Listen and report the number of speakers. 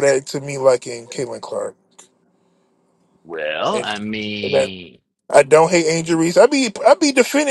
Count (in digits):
2